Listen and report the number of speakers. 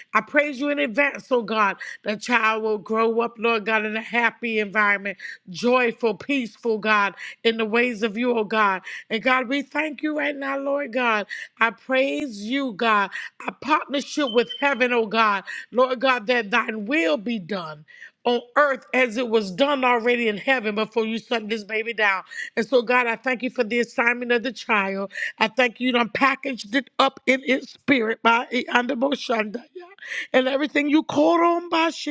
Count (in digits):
1